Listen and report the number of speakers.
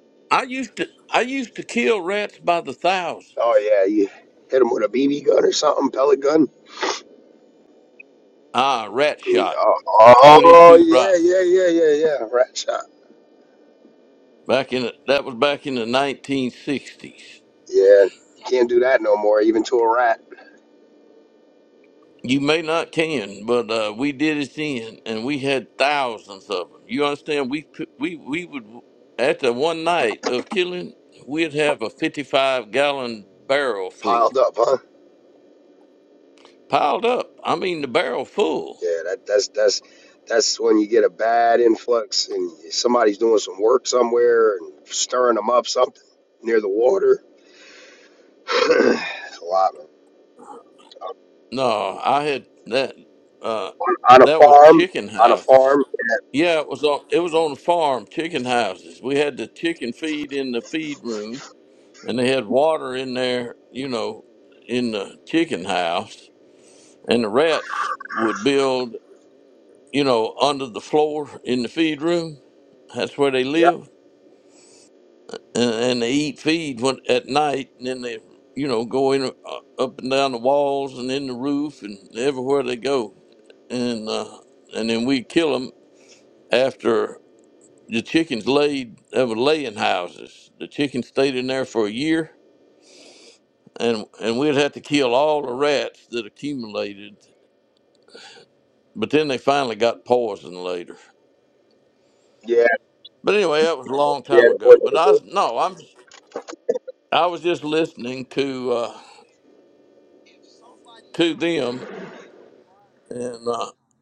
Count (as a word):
two